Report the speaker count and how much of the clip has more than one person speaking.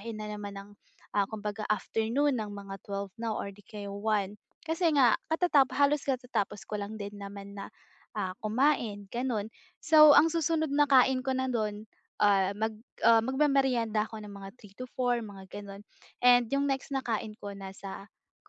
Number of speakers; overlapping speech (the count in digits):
1, no overlap